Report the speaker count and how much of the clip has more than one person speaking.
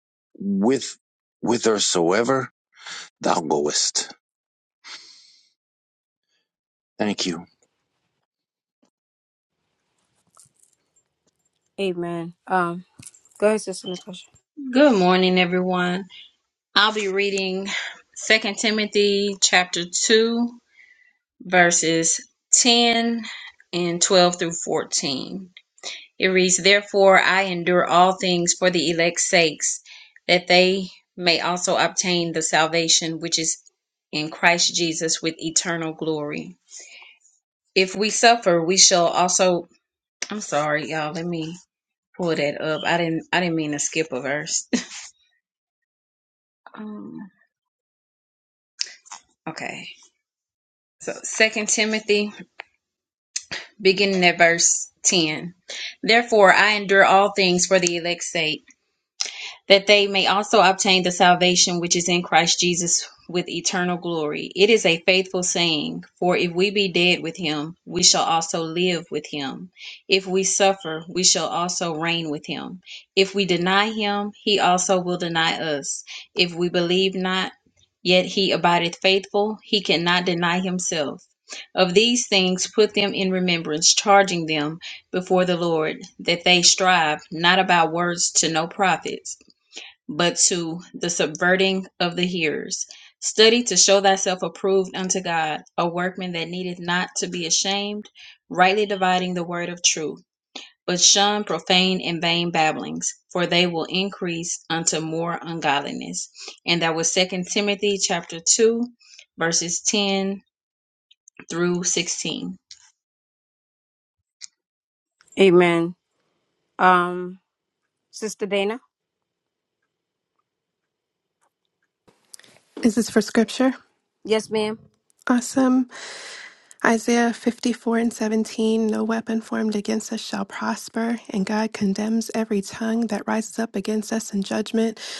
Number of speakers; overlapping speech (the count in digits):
4, no overlap